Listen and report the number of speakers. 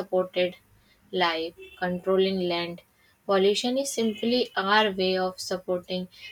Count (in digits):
1